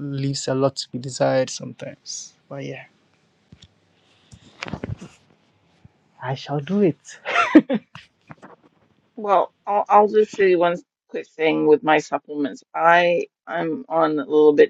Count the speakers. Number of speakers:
2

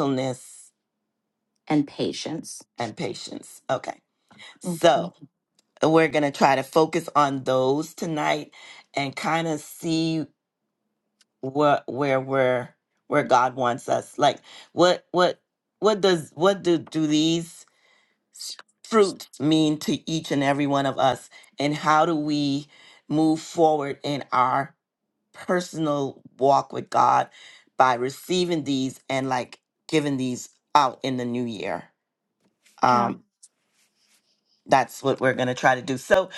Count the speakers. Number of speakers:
2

